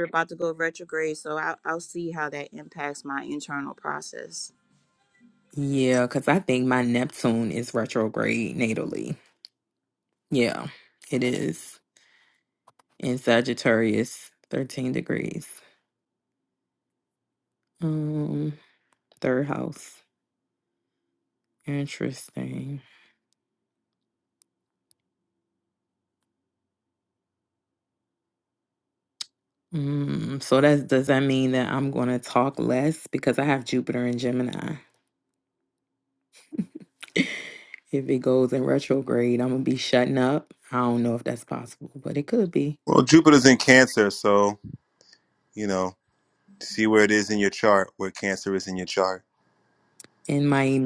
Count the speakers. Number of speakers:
three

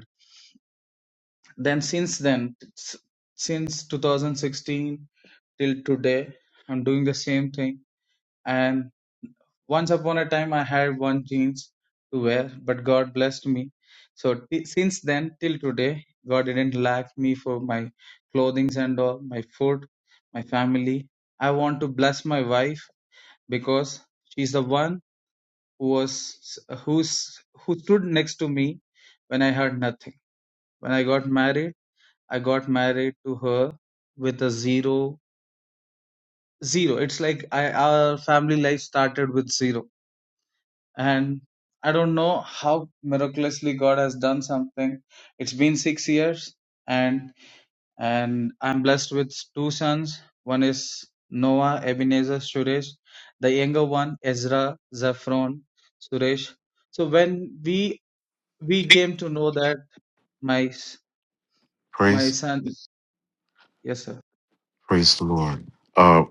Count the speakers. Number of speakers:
two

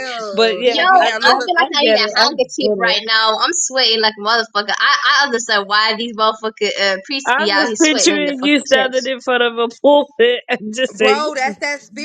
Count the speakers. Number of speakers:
three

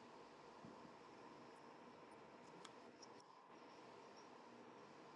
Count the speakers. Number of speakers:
zero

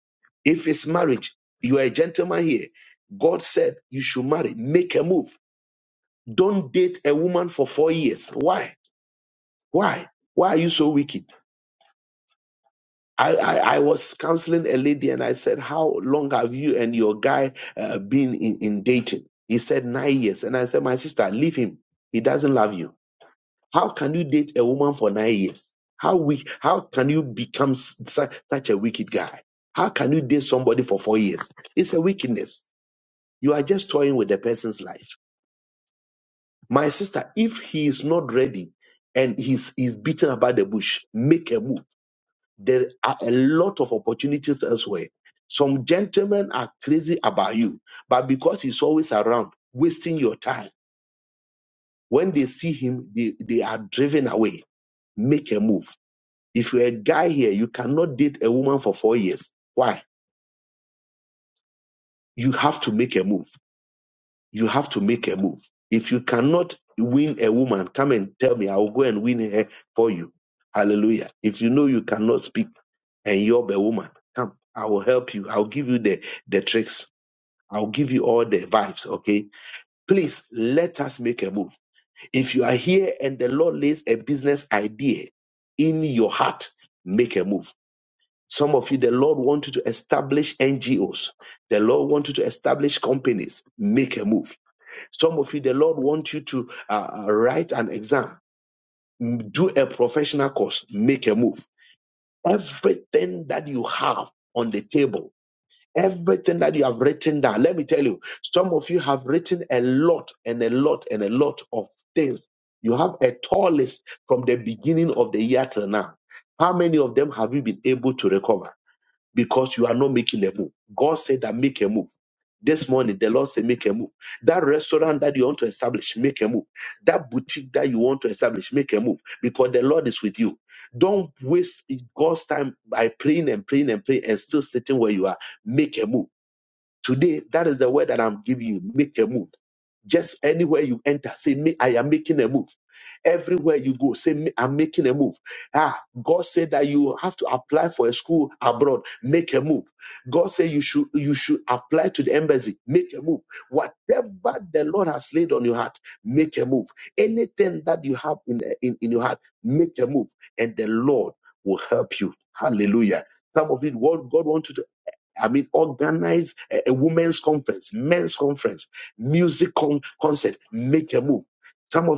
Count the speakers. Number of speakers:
one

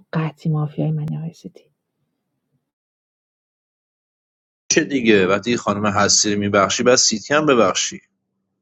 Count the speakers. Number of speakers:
two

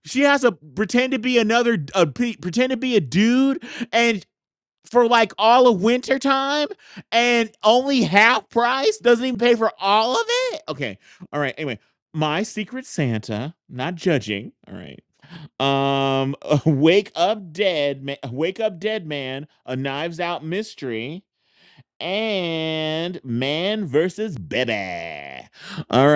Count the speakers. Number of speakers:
one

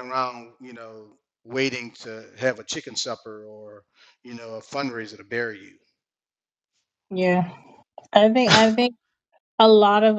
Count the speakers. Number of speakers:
two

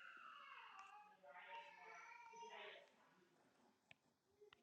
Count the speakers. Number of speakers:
zero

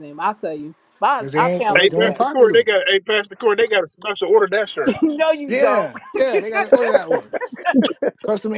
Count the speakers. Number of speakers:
three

